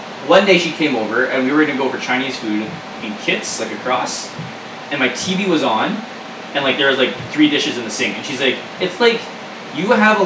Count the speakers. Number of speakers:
1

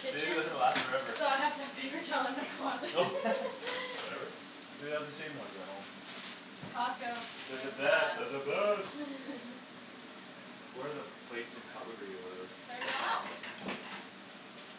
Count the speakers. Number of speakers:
3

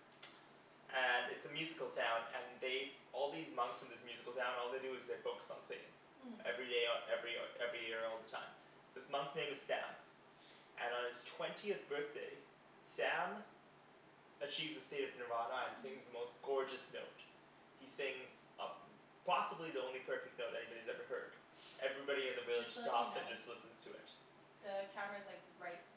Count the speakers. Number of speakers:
2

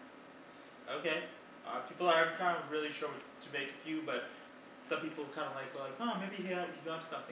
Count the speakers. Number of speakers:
1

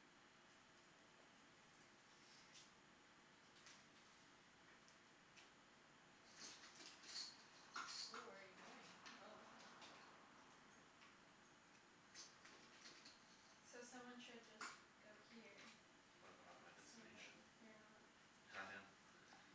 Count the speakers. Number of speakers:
3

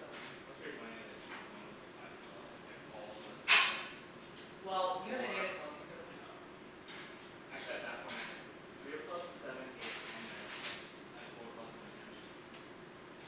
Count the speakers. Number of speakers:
2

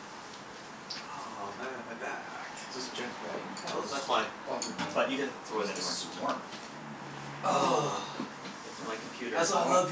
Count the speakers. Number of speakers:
3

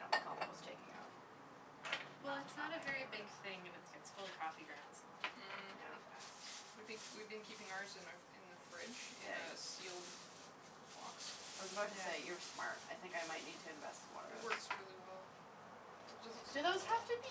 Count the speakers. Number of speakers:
3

